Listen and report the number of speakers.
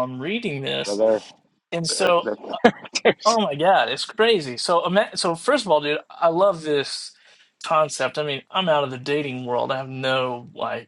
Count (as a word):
two